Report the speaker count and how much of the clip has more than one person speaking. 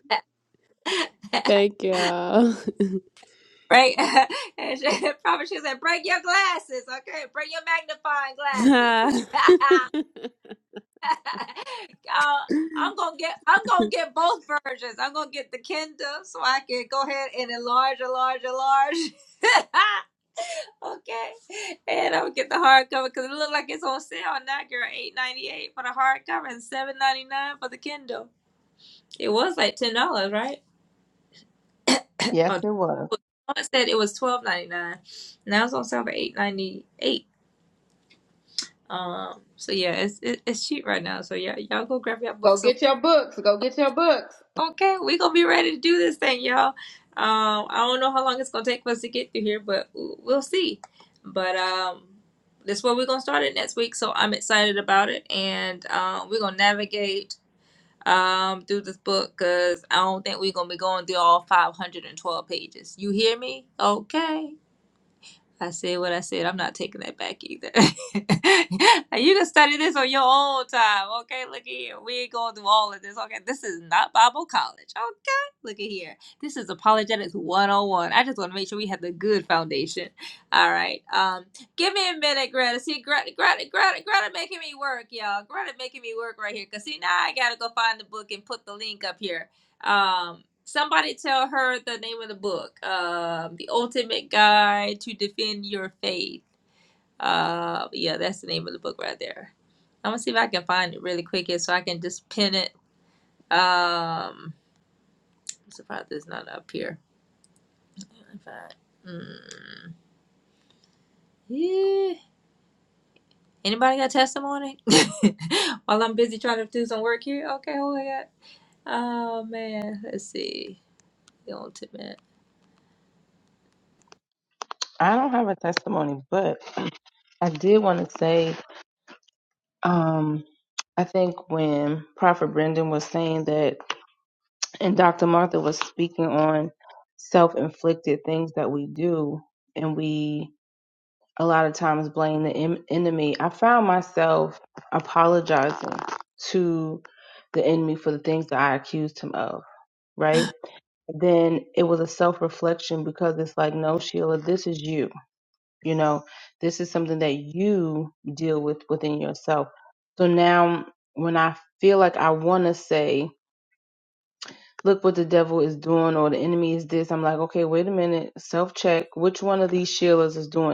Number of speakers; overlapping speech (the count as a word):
four, about 1%